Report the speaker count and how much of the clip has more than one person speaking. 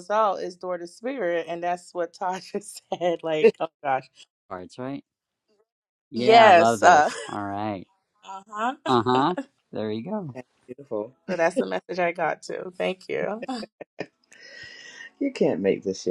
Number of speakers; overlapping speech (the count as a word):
three, about 7%